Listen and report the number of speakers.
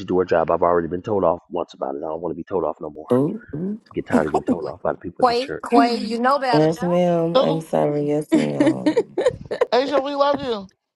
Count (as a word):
four